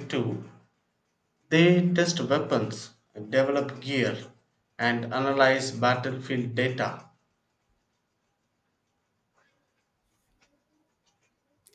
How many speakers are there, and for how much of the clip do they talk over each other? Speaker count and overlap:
1, no overlap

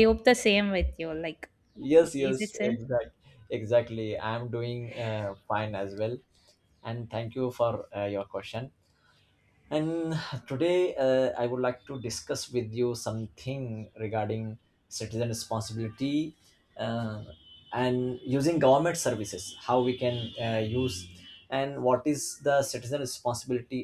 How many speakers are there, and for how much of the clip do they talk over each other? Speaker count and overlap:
2, about 3%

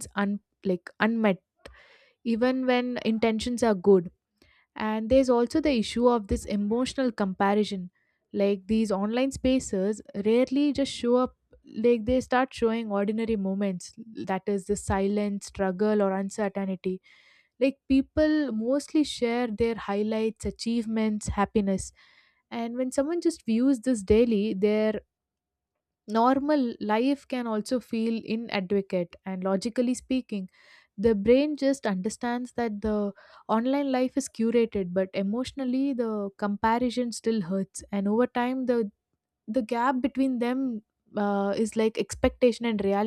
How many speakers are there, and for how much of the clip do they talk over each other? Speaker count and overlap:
1, no overlap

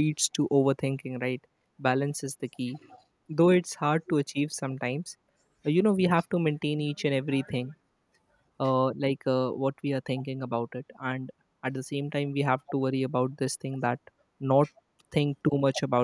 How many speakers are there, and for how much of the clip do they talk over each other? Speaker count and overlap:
1, no overlap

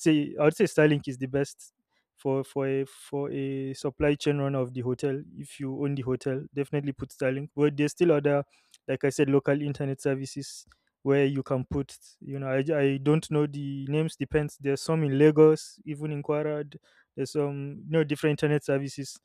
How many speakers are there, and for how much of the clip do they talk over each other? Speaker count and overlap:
1, no overlap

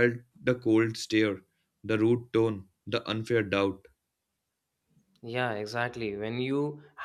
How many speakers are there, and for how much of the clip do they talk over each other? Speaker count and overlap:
2, no overlap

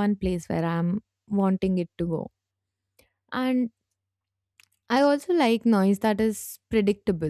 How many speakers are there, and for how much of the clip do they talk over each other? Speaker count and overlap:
1, no overlap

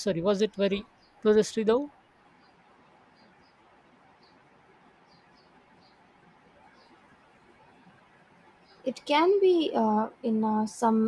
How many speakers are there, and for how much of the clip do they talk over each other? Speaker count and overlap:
2, no overlap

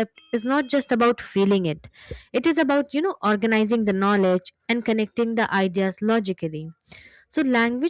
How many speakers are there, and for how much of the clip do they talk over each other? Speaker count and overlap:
1, no overlap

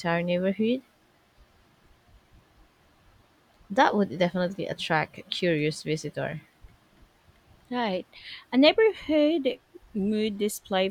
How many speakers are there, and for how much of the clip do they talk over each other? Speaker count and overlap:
2, no overlap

